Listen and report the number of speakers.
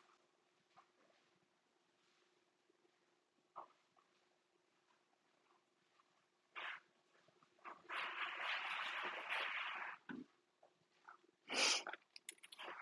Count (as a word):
zero